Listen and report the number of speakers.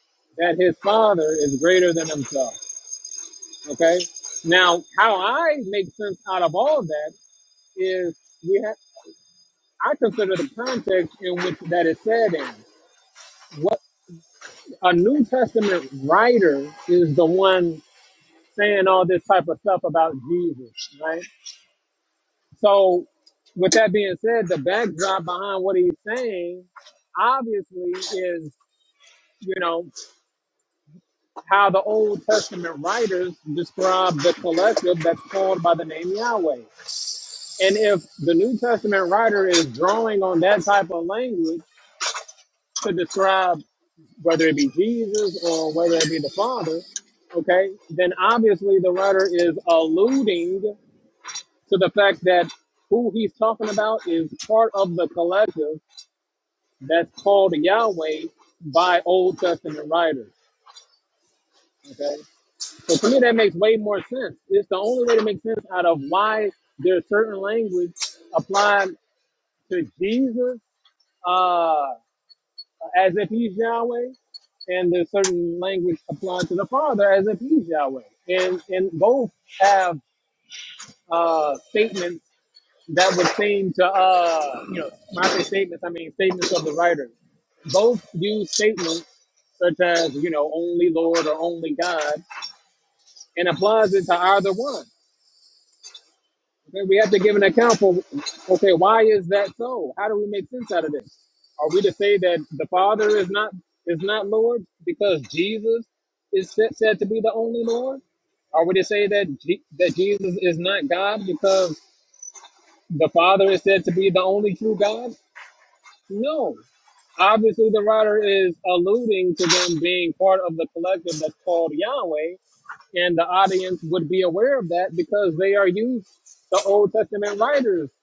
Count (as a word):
one